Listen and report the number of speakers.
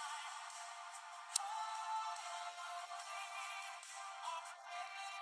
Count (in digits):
0